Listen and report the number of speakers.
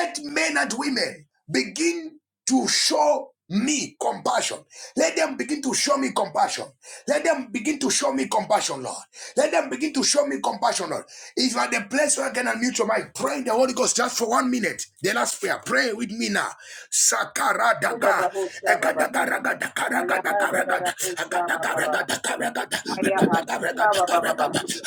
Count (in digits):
2